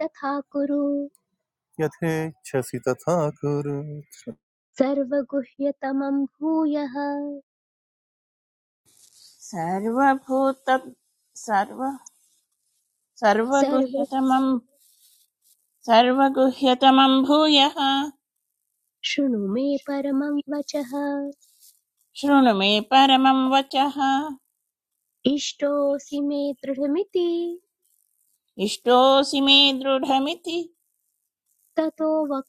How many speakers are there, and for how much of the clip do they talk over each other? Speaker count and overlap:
3, about 1%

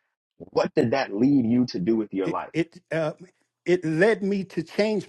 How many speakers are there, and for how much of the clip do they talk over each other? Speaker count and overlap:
2, about 5%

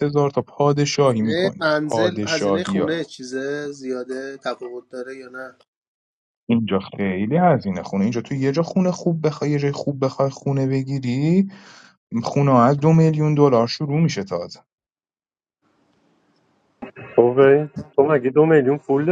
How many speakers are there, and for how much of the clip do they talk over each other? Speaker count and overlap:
3, about 8%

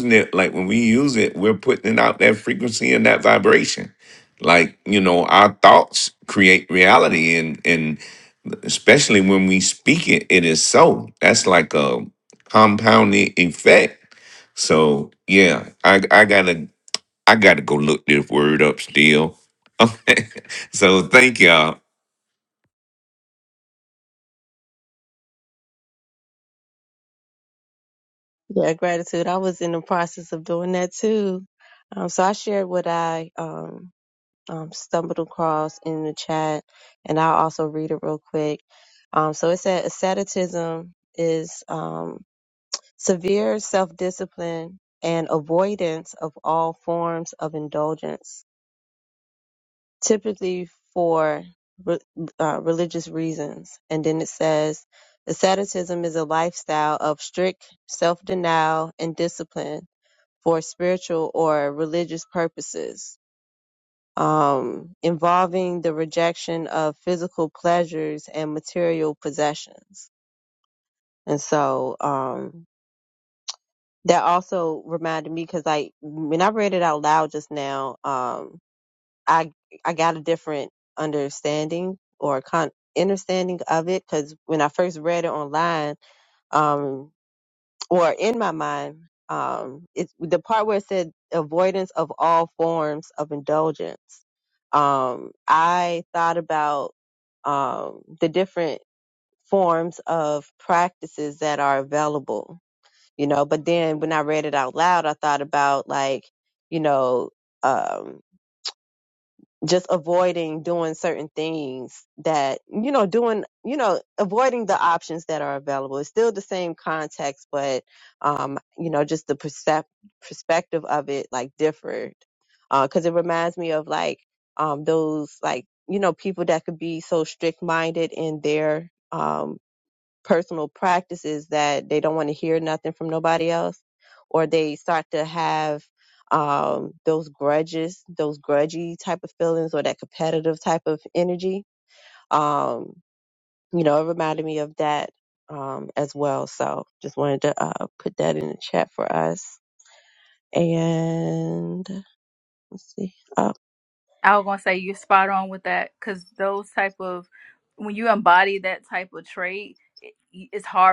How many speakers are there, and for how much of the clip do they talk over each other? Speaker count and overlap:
3, no overlap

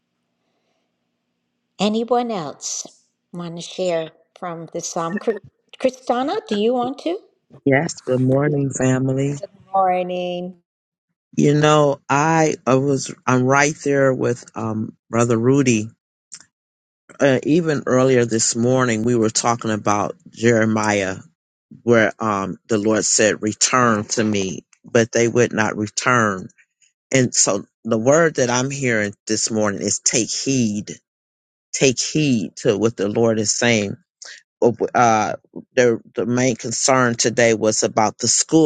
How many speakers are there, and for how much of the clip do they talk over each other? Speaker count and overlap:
2, no overlap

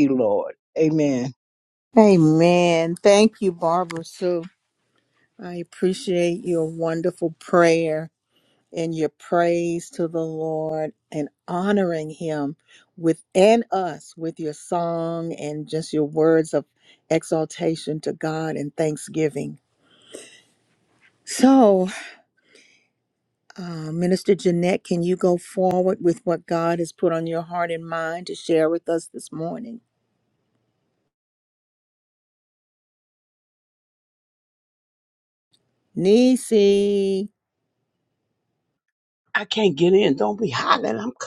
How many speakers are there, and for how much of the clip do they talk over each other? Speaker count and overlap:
3, no overlap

